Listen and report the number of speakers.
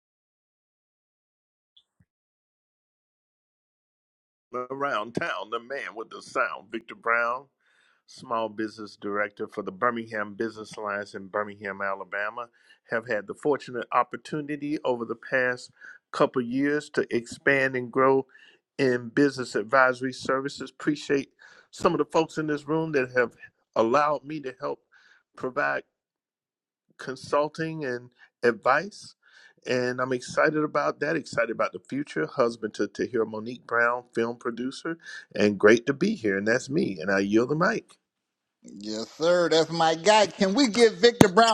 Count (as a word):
two